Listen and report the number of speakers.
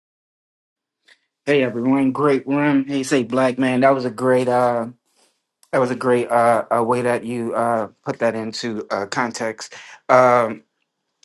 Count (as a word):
one